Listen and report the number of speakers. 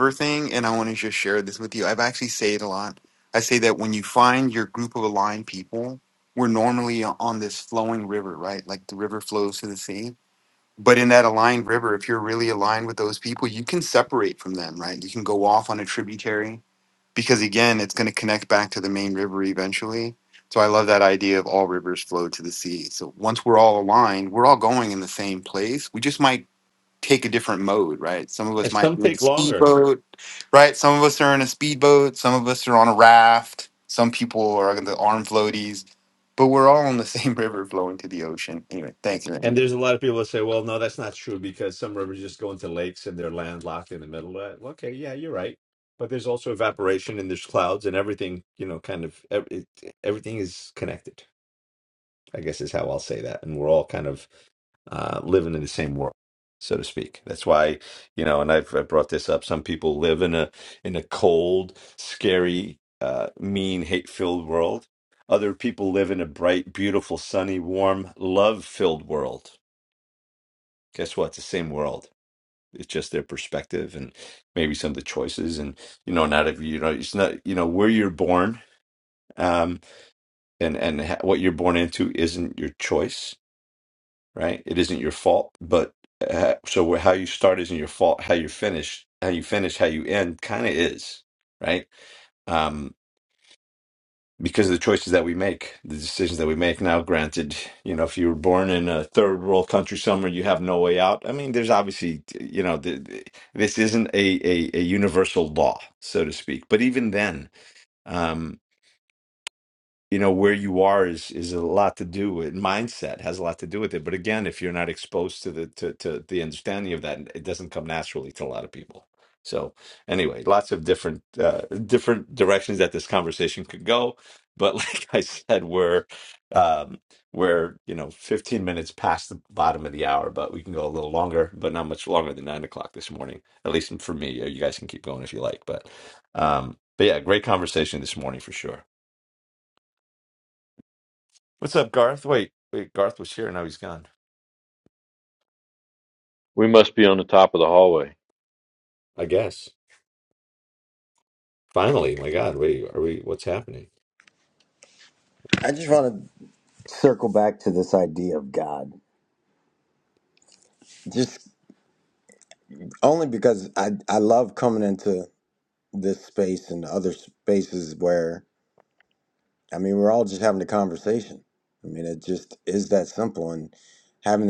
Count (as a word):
four